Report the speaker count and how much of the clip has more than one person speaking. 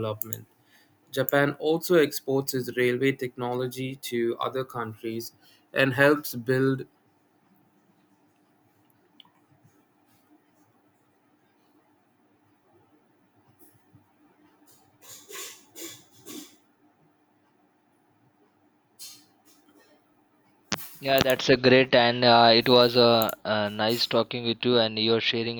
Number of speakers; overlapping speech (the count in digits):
2, no overlap